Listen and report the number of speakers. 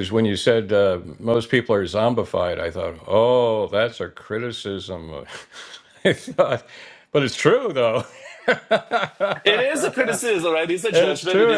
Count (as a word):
two